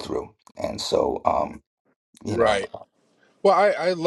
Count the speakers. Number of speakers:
two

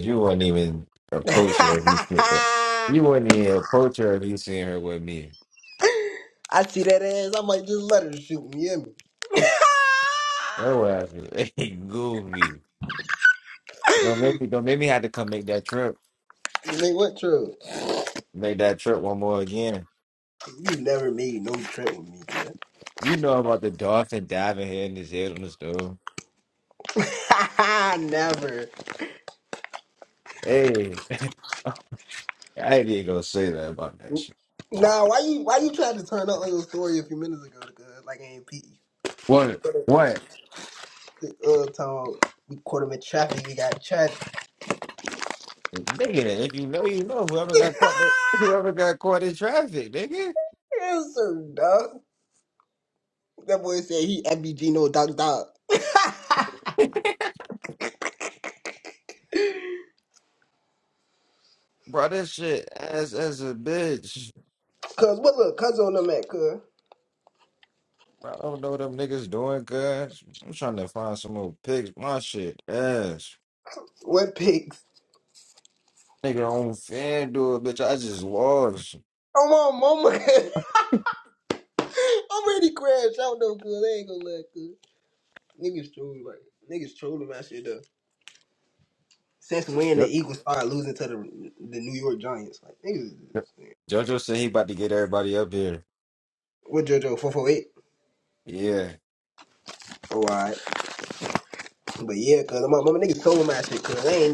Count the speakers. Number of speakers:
two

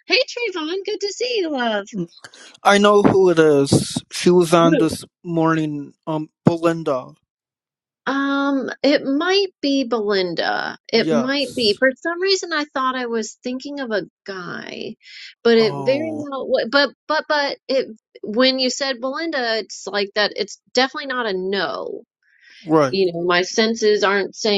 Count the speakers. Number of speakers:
two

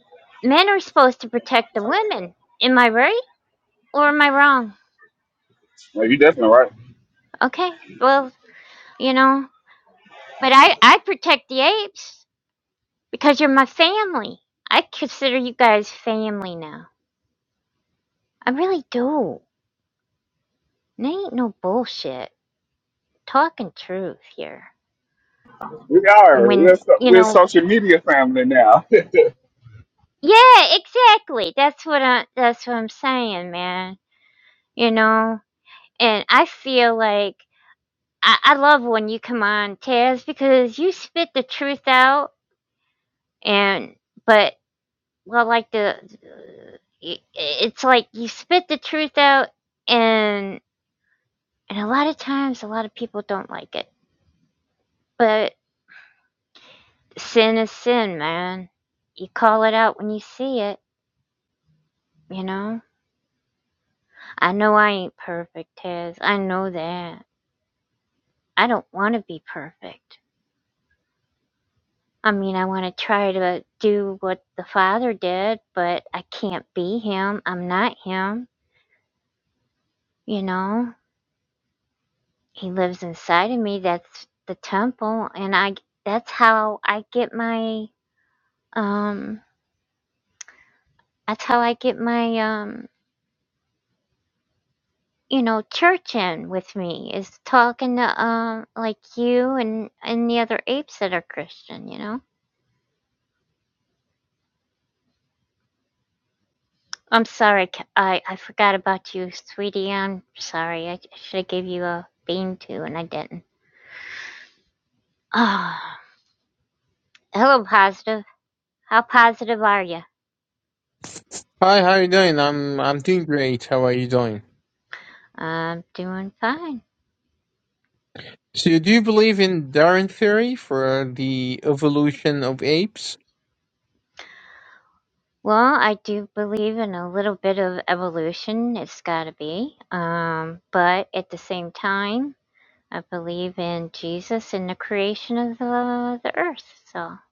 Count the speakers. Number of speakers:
three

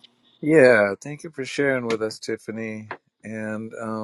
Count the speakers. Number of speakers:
one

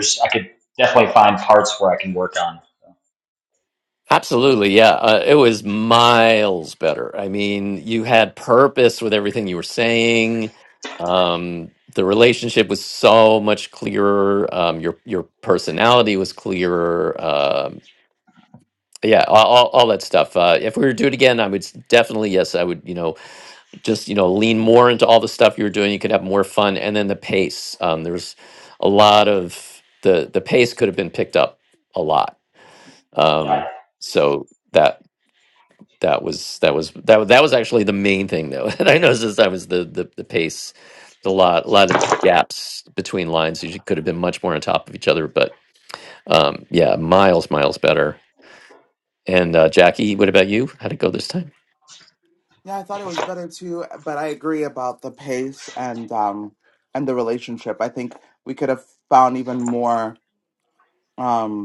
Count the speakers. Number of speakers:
three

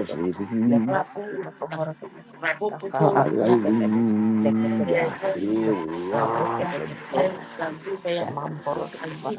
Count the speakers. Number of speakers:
three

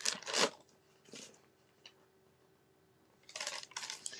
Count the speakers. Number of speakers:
zero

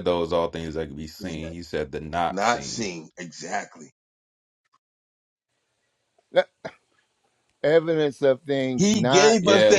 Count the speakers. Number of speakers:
three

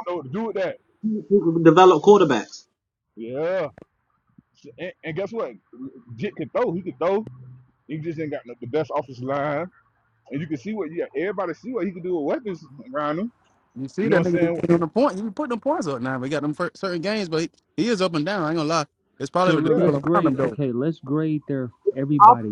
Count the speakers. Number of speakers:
four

